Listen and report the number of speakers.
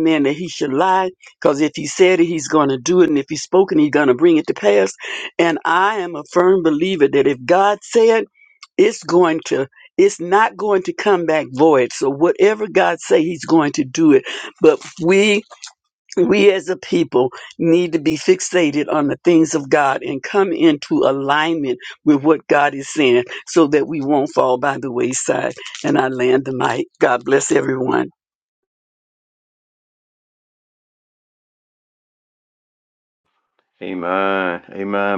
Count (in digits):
2